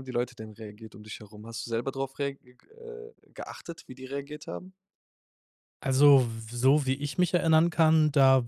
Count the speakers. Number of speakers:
two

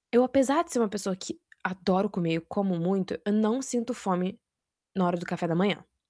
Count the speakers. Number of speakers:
one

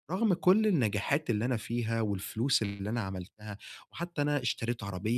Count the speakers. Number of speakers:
one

